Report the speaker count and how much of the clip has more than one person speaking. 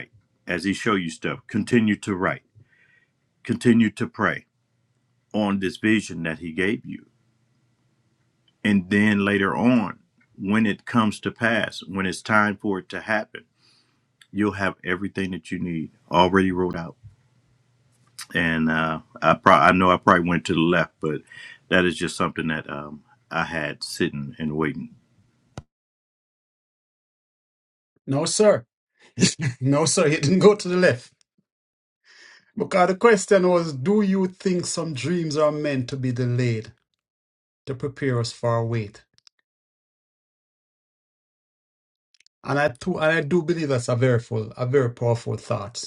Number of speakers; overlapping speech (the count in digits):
2, no overlap